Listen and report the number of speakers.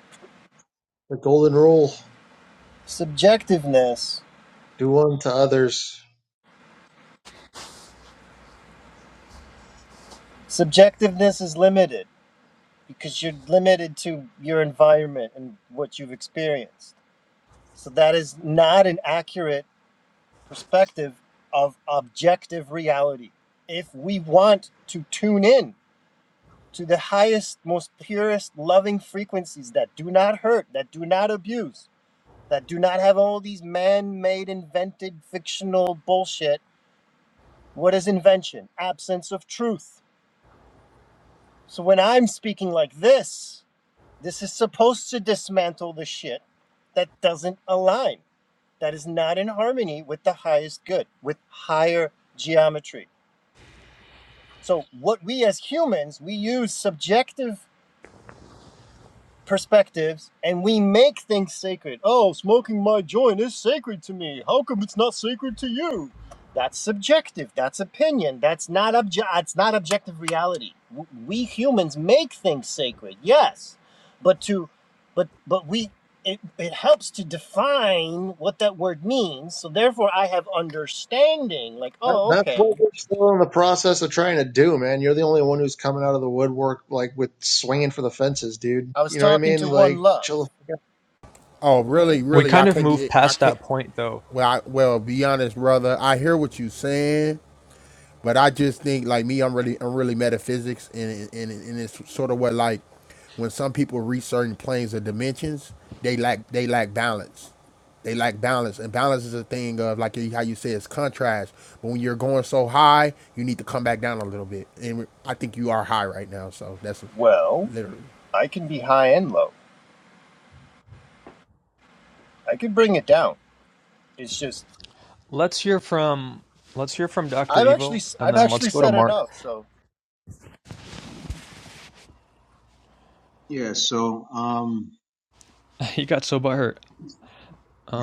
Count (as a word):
five